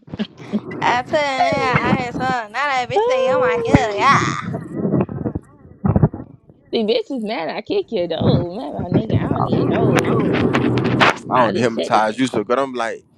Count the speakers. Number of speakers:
three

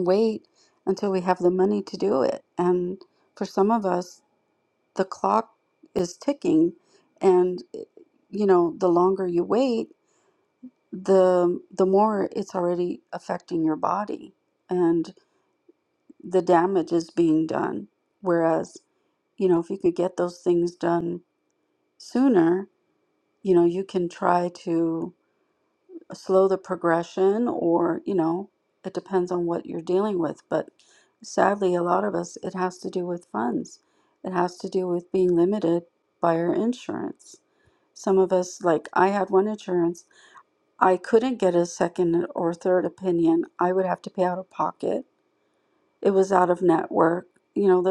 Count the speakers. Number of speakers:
one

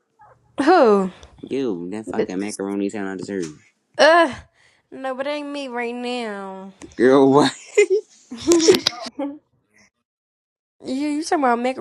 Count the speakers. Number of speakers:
two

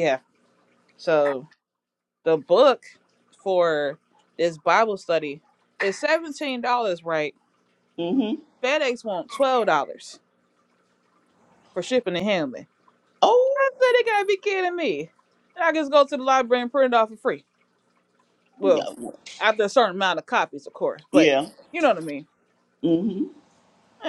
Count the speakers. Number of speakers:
two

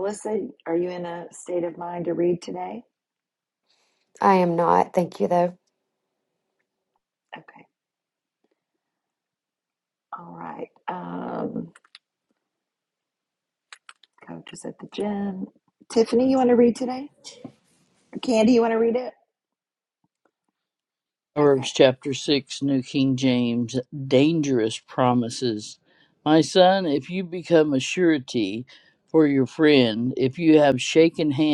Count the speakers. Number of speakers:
three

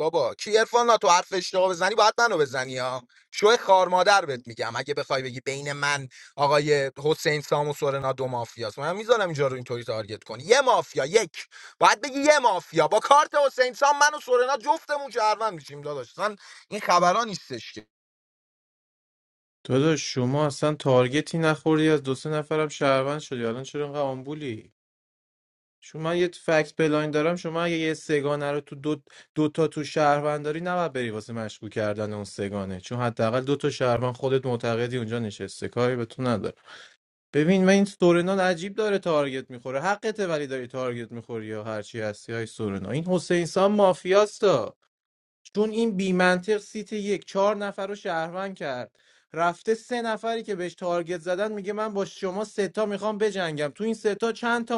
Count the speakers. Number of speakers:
two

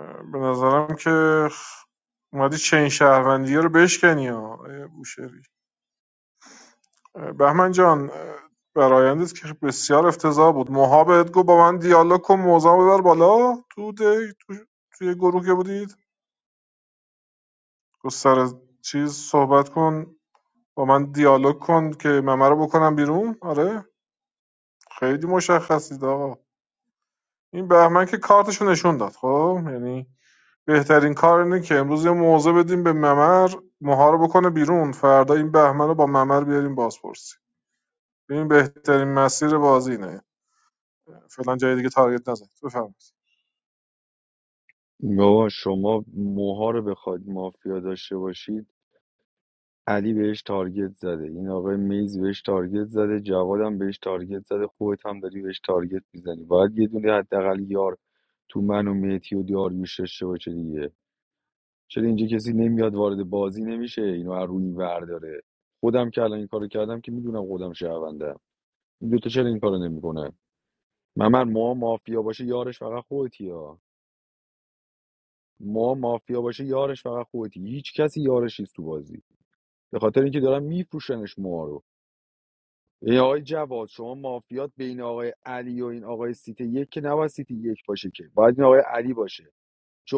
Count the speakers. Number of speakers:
two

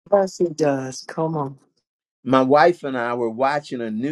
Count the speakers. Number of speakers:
two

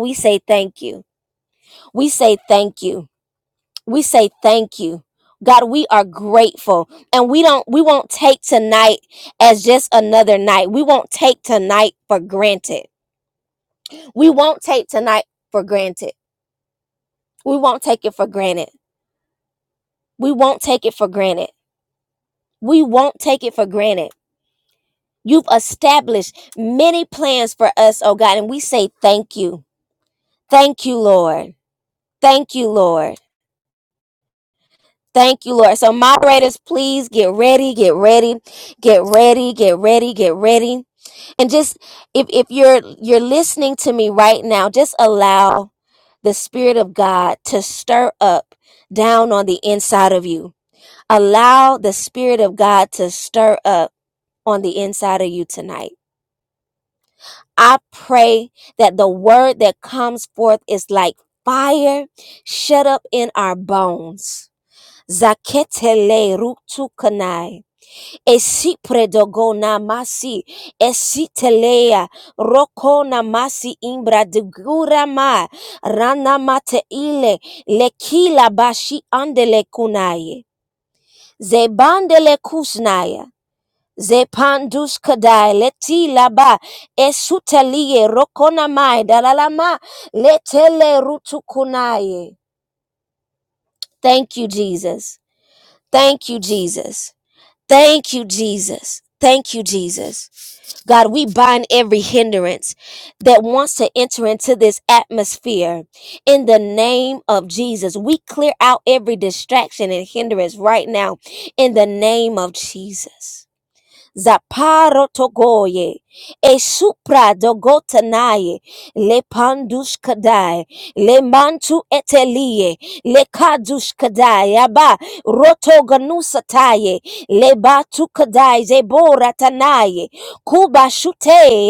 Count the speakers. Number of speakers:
one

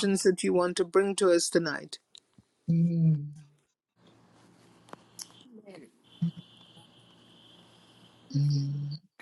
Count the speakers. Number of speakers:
two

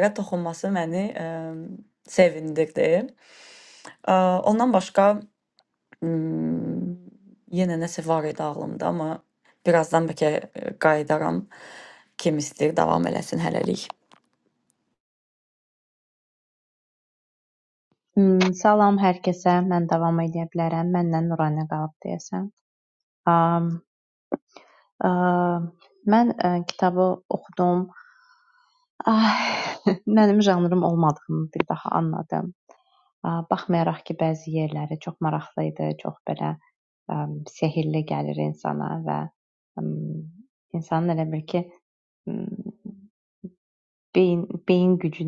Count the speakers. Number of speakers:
two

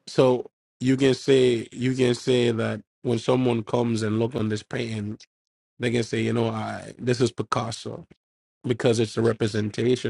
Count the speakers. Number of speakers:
one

